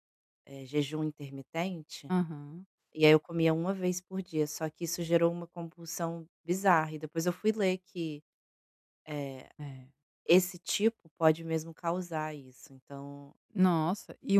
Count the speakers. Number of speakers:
2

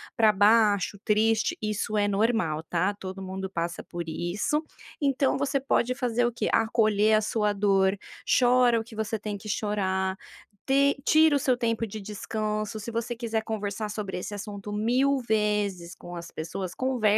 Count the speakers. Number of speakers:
1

